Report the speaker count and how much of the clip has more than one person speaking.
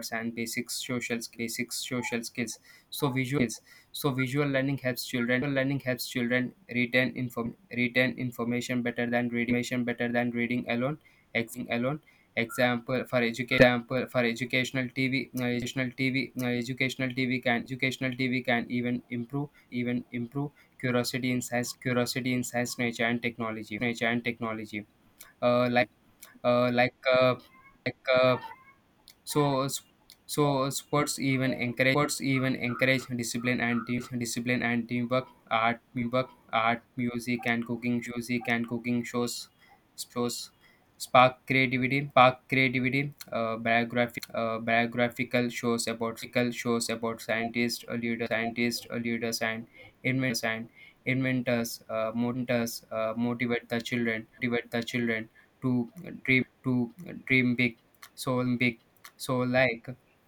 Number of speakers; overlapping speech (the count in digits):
1, no overlap